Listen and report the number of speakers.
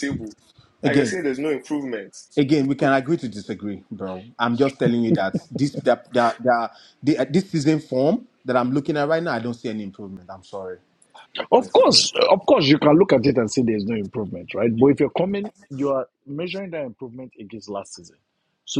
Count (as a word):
three